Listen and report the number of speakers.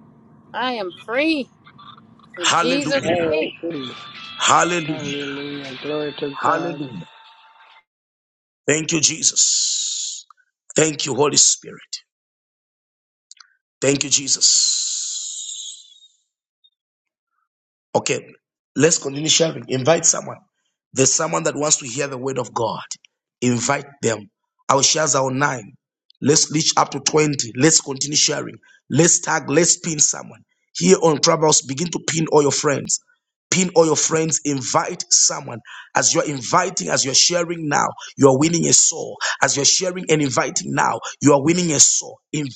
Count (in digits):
3